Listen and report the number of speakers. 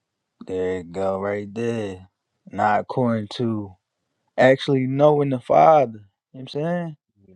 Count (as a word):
one